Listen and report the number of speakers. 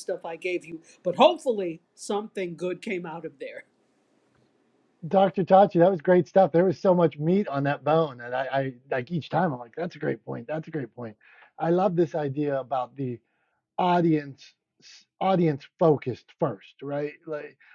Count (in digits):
2